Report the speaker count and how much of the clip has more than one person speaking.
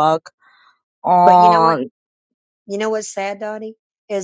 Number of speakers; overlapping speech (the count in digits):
2, about 12%